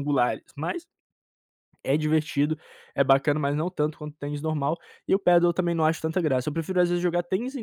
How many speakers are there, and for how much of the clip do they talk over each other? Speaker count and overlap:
1, no overlap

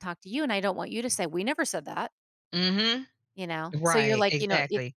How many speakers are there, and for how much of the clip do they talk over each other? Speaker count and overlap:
2, about 22%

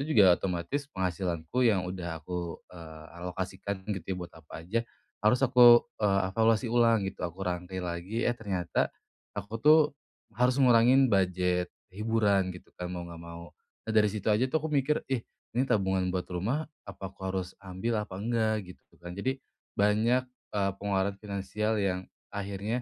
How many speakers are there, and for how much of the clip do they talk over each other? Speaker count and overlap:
1, no overlap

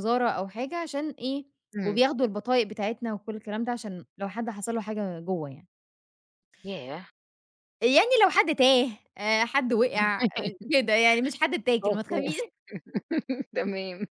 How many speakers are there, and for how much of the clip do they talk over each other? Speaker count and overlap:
2, about 4%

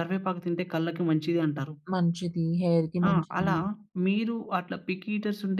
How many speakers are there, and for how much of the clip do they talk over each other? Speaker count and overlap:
2, about 10%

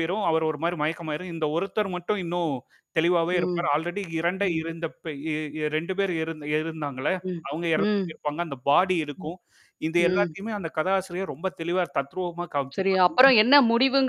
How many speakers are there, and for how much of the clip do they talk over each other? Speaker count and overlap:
2, about 11%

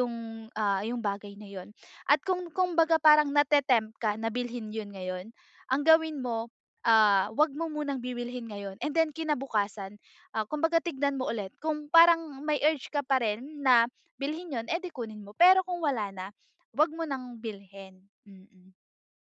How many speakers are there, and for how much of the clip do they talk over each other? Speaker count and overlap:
1, no overlap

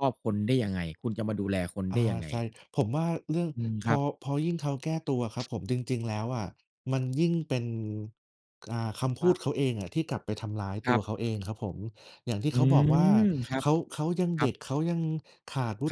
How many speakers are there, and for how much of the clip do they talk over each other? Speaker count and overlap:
2, about 7%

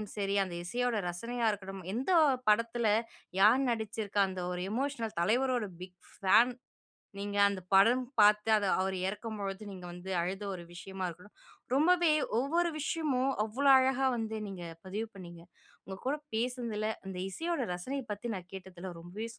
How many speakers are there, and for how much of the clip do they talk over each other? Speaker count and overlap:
1, no overlap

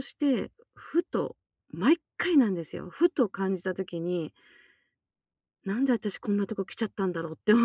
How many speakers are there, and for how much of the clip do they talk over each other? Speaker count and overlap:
1, no overlap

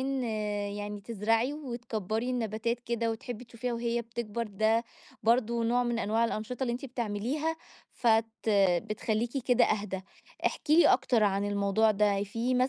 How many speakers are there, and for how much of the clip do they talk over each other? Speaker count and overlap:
1, no overlap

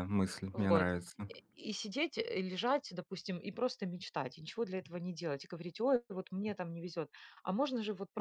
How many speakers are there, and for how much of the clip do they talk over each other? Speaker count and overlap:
2, about 5%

